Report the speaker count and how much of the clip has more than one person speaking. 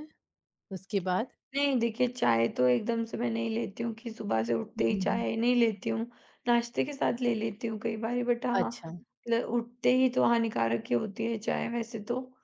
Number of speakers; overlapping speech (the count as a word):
two, about 5%